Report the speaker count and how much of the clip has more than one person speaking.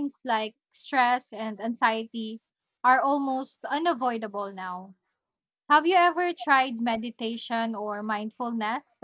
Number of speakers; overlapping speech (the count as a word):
one, no overlap